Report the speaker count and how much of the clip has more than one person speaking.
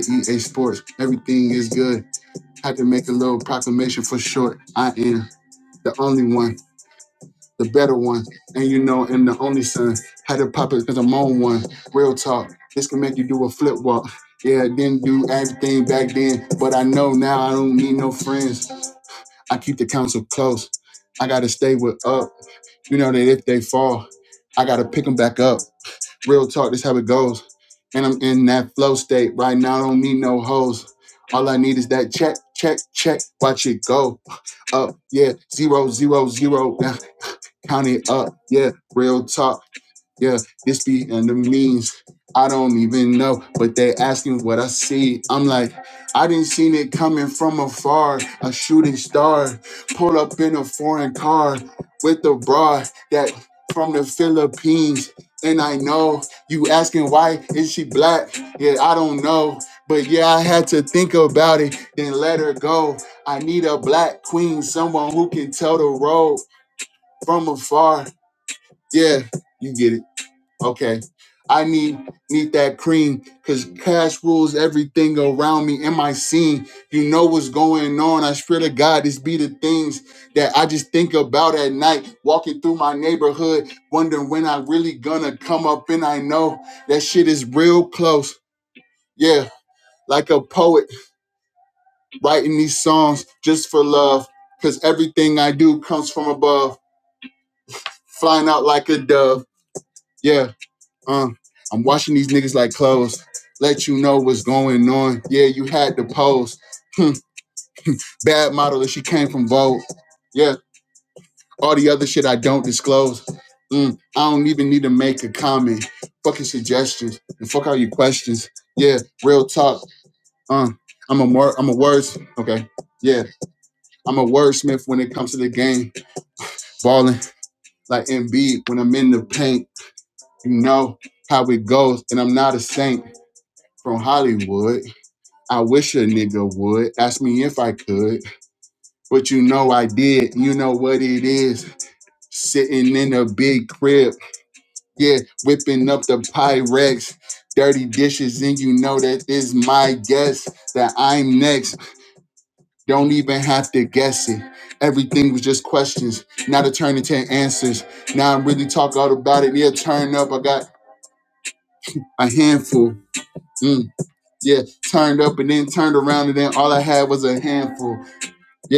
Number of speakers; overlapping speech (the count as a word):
one, no overlap